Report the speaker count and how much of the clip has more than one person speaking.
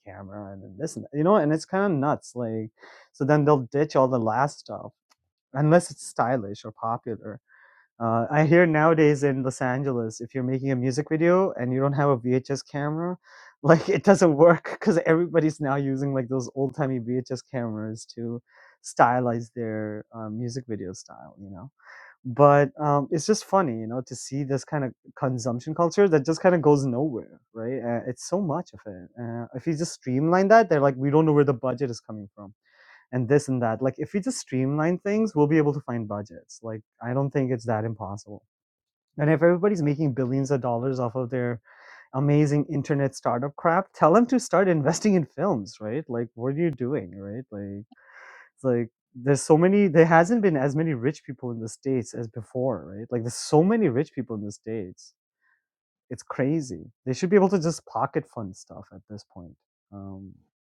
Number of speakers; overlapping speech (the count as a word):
one, no overlap